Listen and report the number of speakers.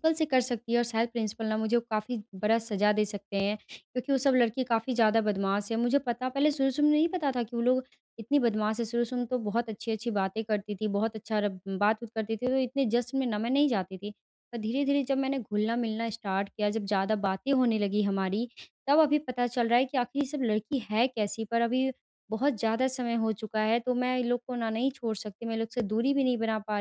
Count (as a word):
one